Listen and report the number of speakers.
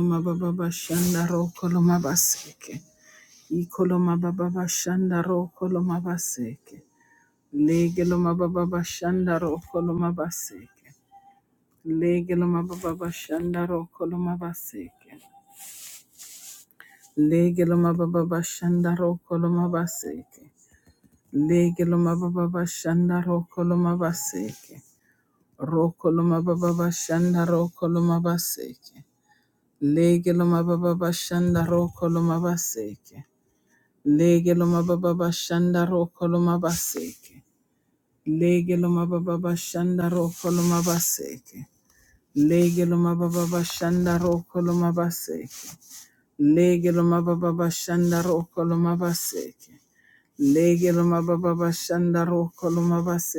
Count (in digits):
1